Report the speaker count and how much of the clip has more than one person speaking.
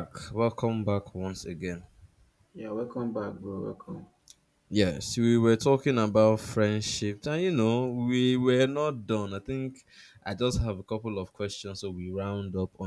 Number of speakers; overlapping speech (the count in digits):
2, no overlap